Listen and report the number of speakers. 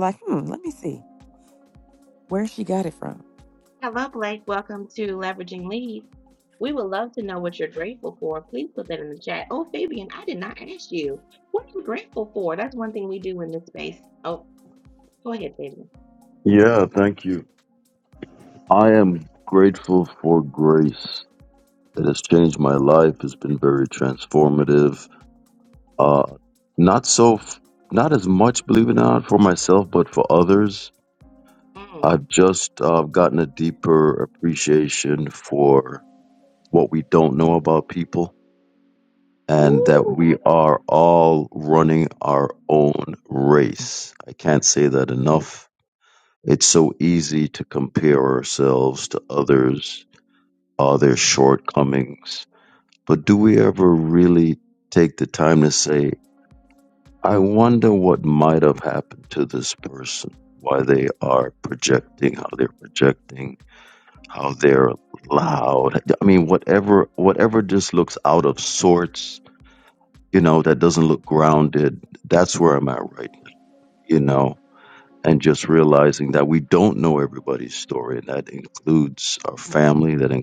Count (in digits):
3